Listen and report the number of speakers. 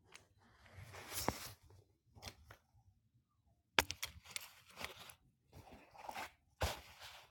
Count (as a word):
zero